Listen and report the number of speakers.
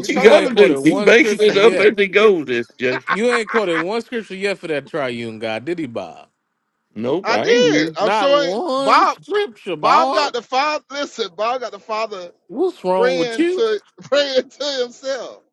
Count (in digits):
3